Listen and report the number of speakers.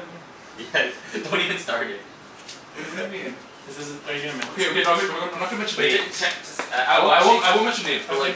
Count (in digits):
3